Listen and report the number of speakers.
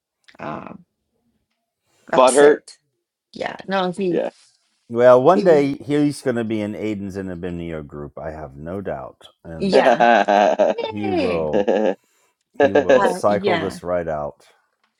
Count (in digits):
3